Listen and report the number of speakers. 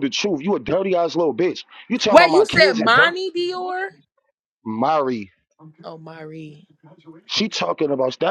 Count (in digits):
2